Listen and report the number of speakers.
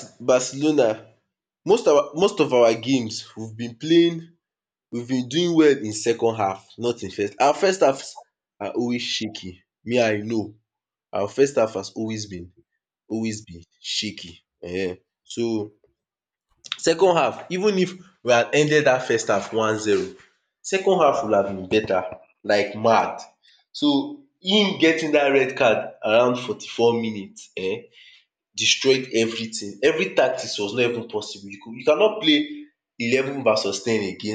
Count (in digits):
1